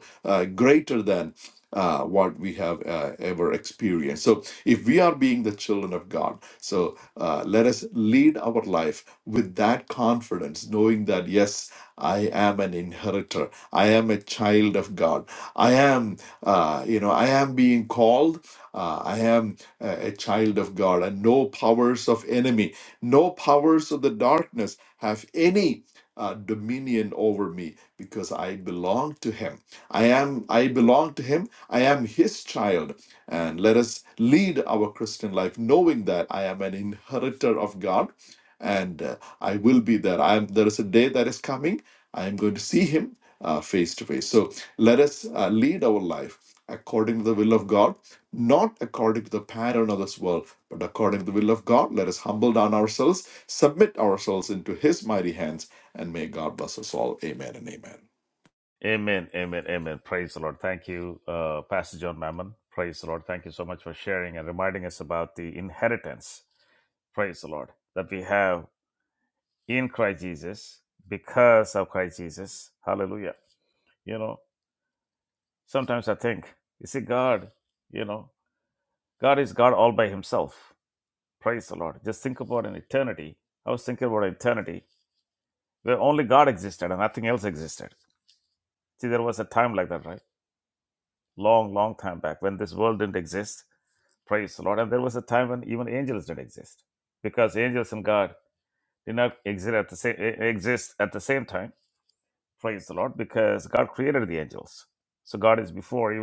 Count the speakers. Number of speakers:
2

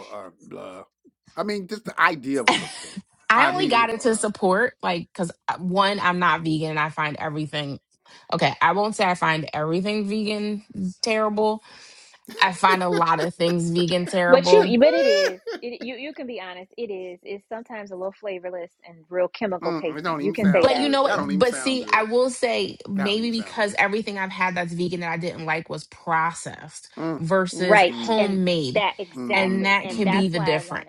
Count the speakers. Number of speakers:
3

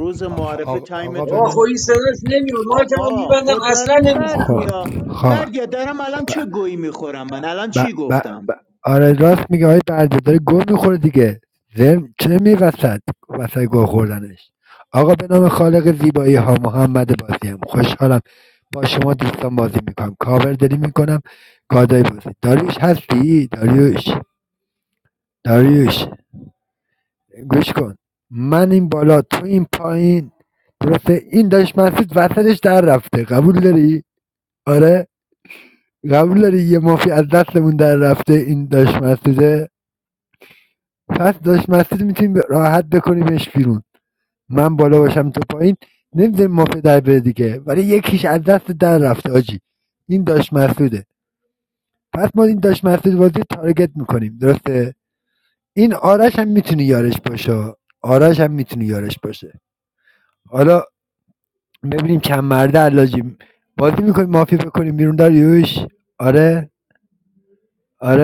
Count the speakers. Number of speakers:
3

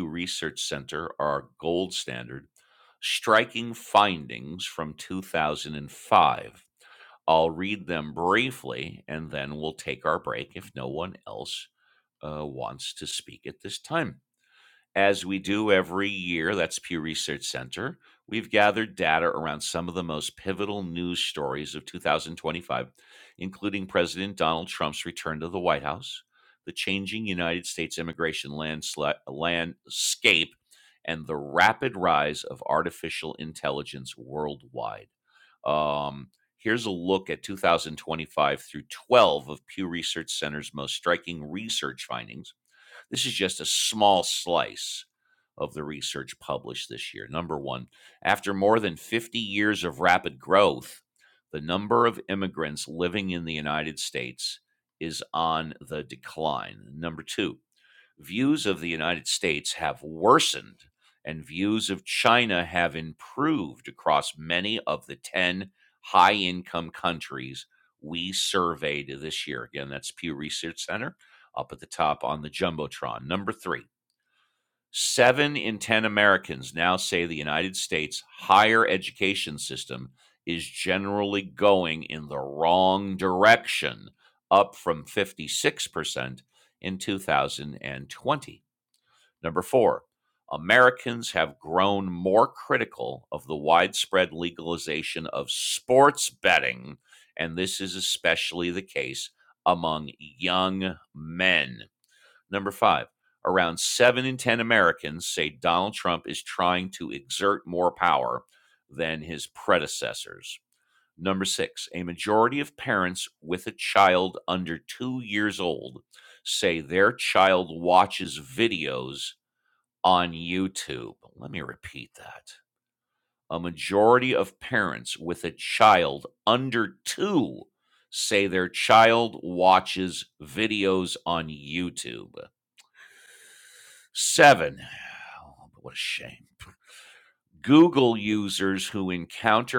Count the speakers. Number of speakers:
1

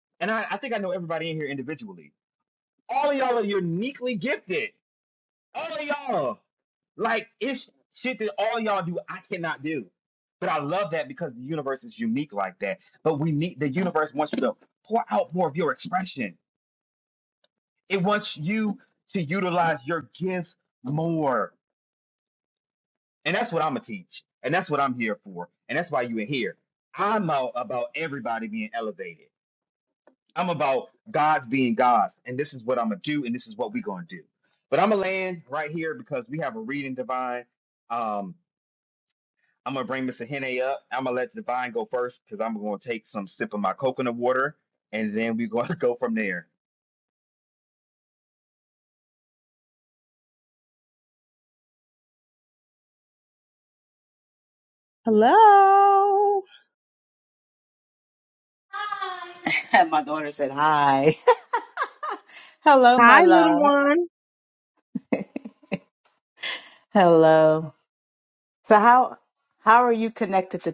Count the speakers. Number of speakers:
3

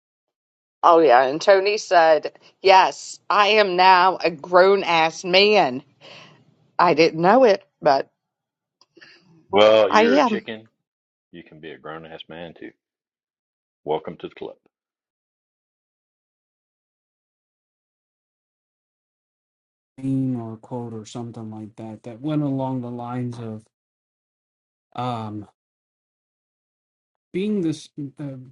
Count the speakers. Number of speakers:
3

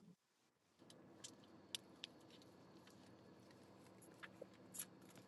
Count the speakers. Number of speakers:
0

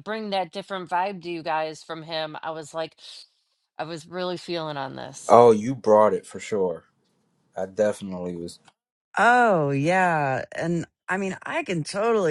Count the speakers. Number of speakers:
3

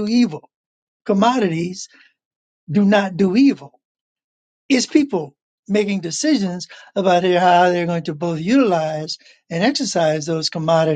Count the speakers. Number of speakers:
1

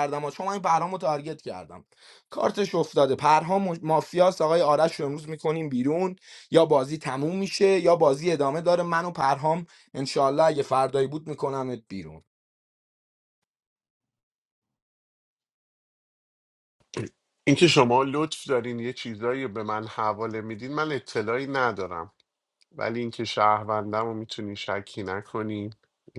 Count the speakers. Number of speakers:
2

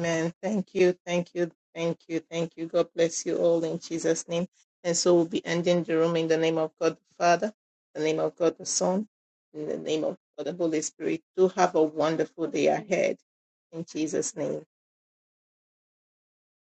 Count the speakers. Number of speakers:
1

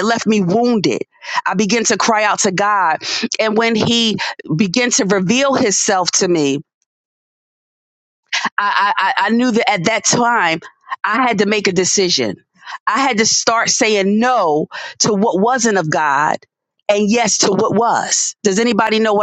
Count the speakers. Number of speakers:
1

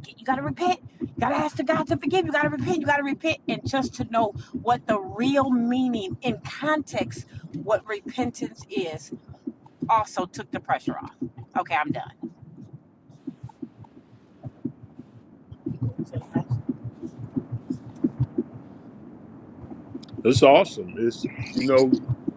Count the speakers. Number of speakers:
2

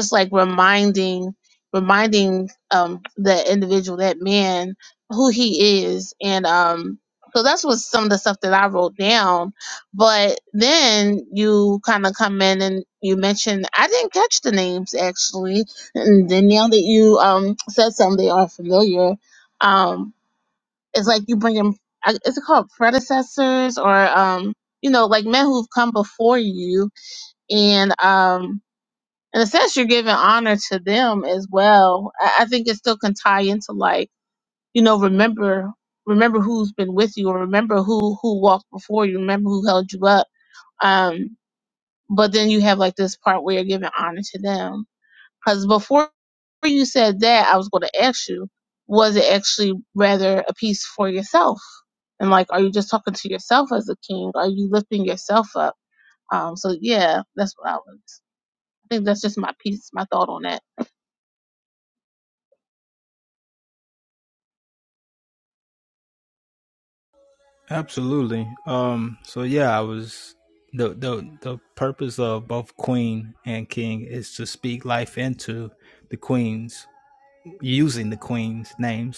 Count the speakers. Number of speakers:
2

